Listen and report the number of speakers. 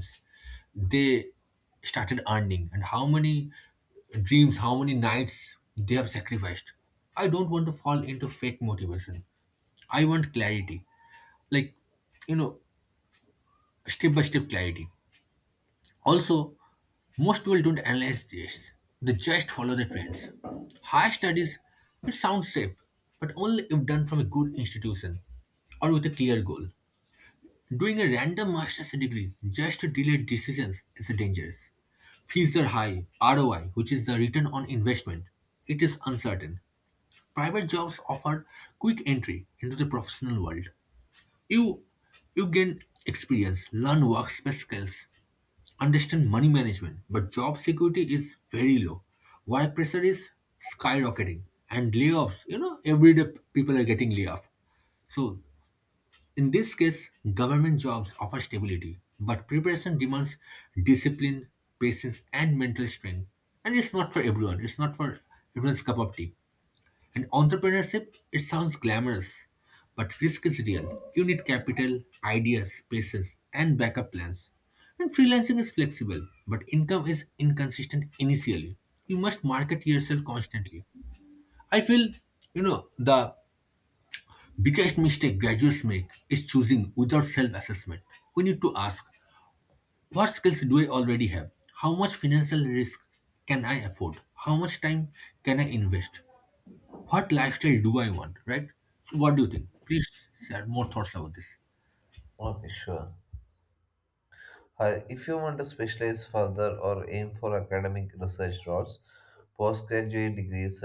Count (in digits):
2